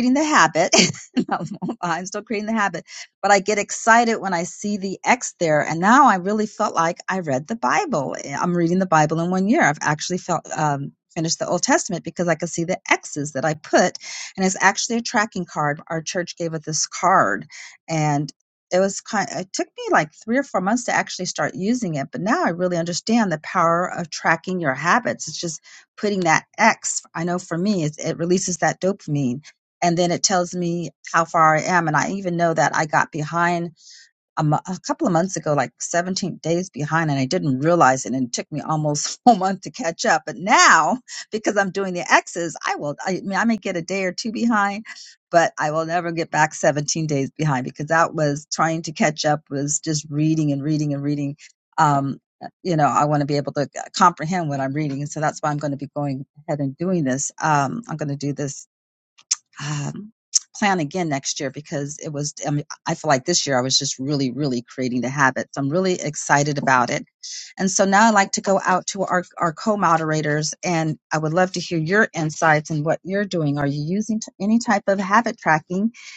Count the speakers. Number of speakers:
1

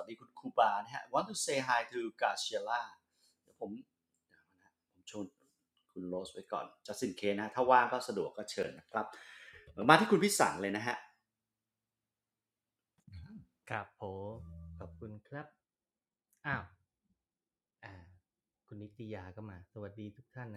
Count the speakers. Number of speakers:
2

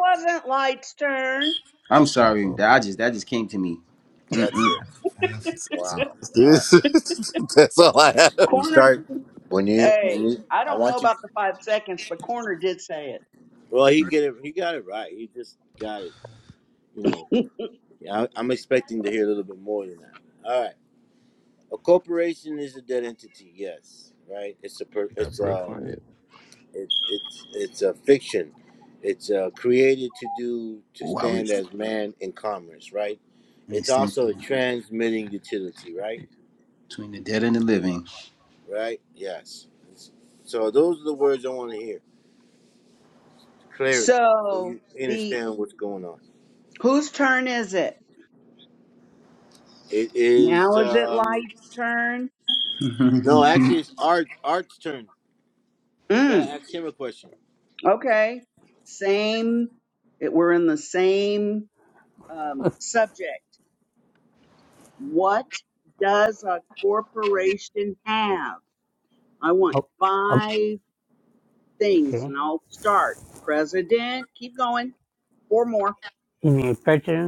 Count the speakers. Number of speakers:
5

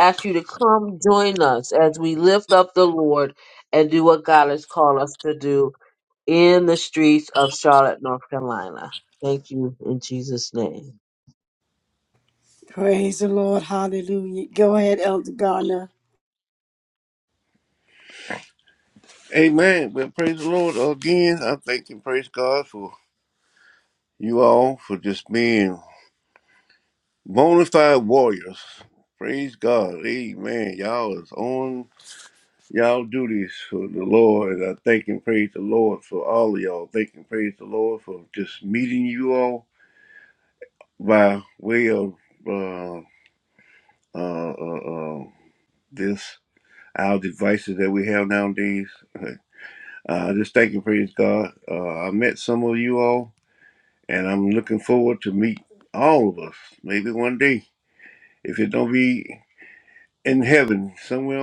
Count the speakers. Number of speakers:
3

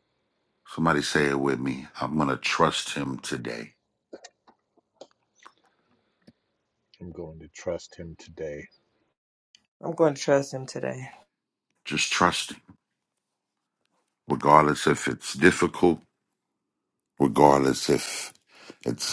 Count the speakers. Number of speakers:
3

